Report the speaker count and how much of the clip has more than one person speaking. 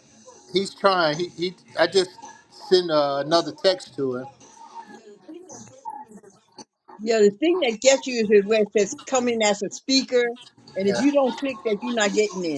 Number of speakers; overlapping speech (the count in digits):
2, about 2%